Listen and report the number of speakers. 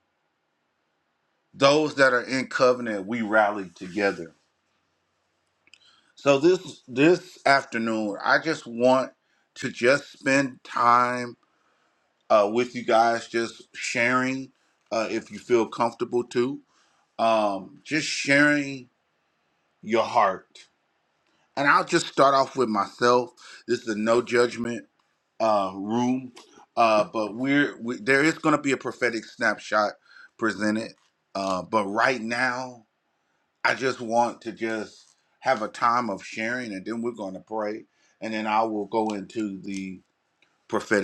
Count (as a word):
one